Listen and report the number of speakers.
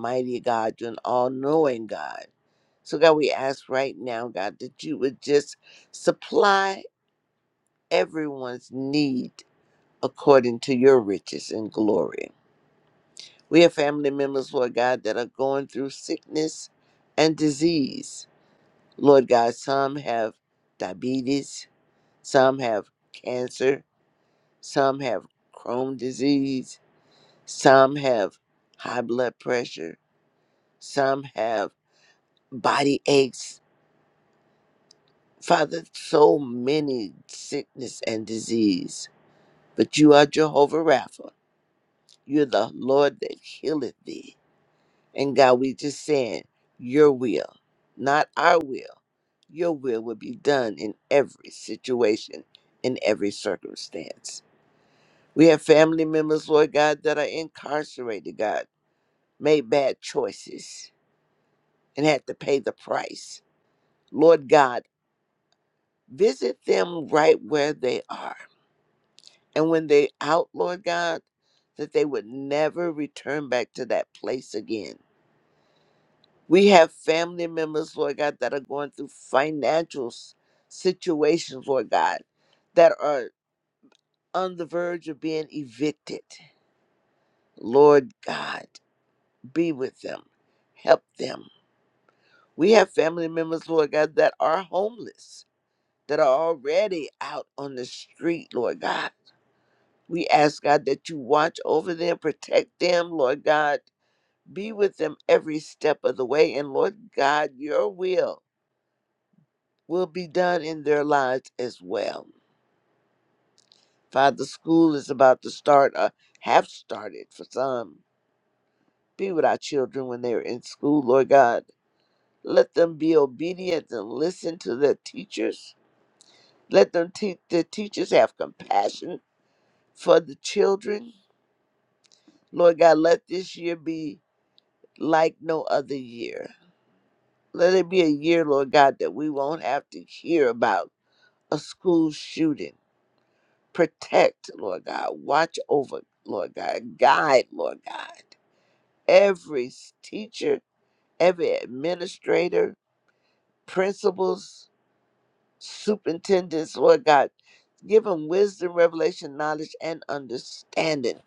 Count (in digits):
1